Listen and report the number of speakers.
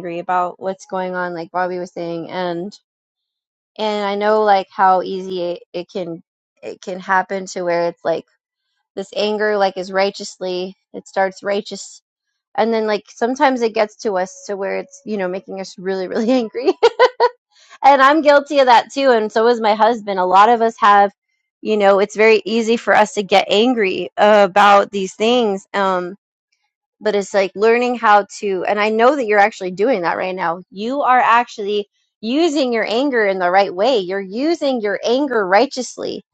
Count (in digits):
1